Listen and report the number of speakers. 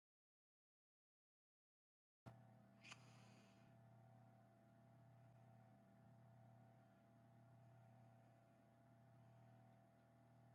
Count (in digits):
0